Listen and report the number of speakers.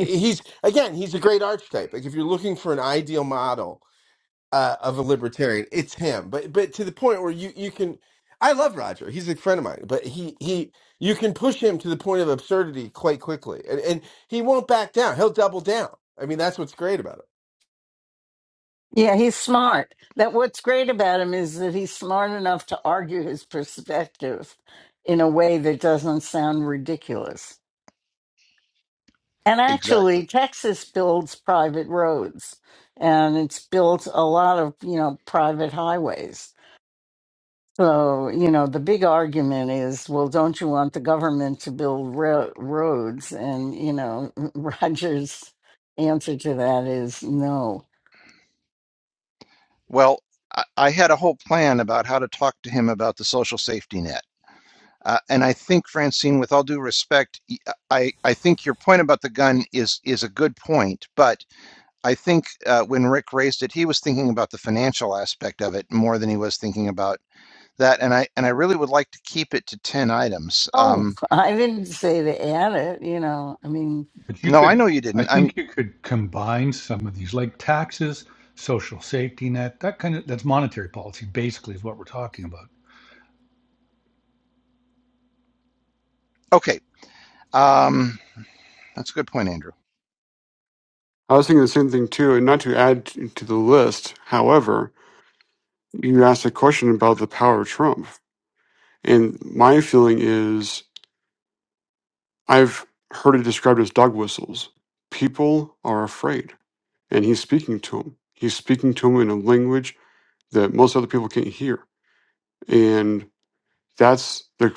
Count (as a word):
five